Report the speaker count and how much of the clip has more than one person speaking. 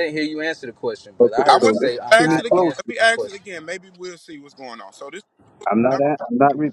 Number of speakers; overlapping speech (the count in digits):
3, about 34%